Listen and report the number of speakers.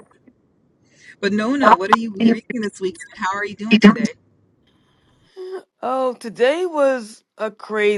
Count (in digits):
2